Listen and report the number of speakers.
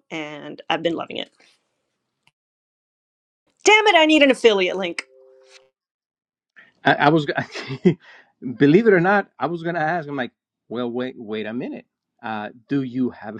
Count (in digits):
2